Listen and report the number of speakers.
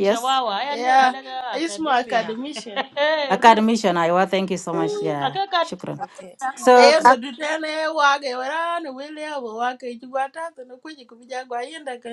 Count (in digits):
3